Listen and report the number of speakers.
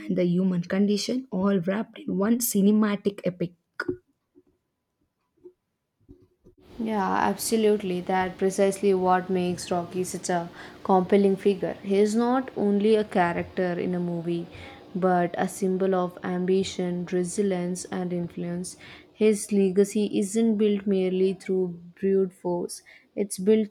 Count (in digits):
2